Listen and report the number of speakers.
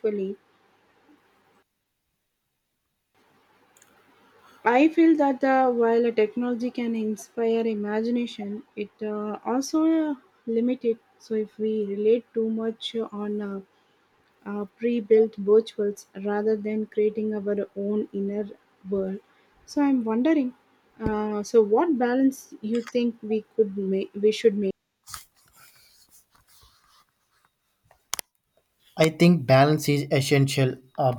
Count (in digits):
2